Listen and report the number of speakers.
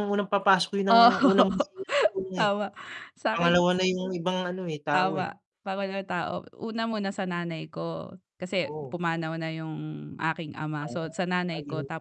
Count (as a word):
two